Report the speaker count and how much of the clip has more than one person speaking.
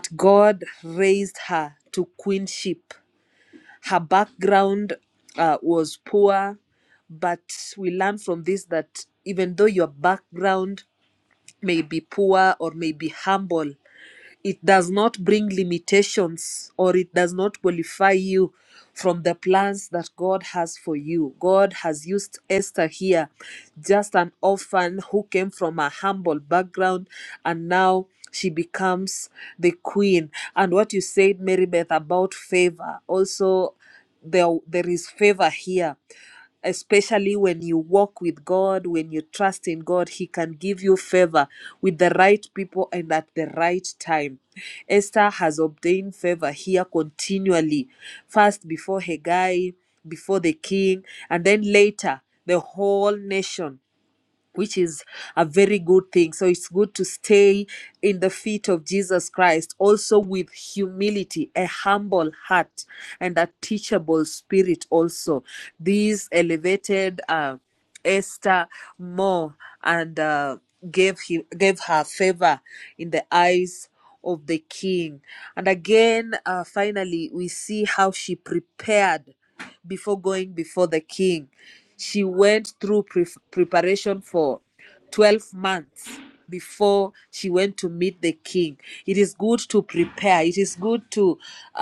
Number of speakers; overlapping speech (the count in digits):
1, no overlap